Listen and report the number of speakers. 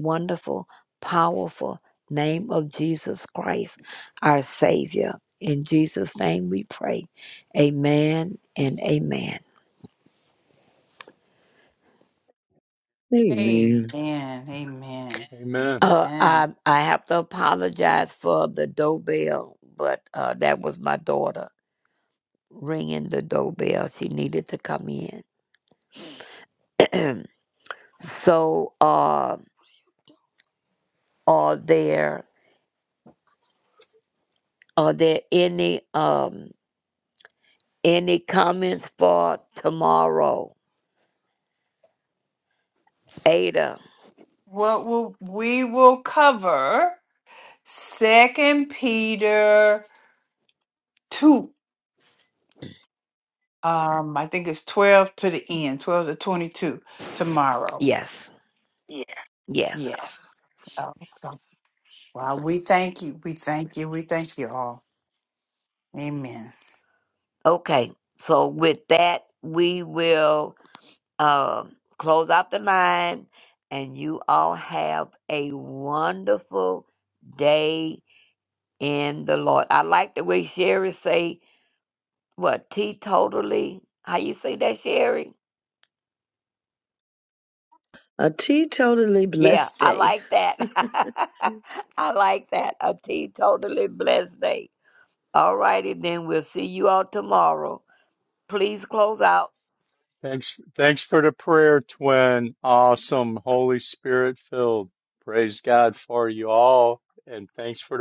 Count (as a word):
four